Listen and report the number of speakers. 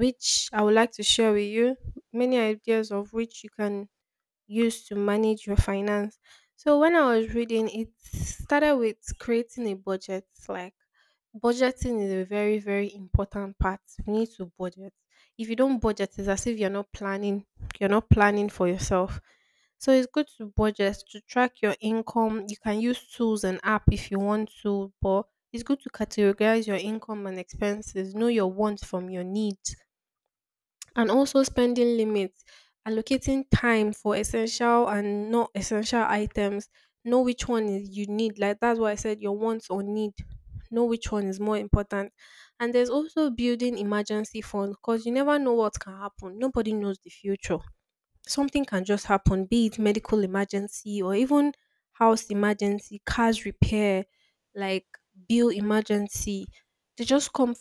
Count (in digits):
1